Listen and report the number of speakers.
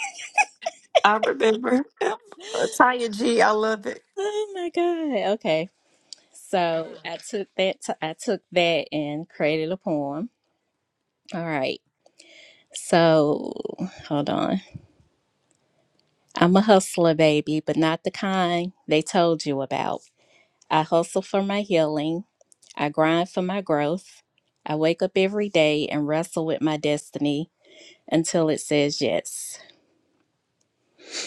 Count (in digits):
2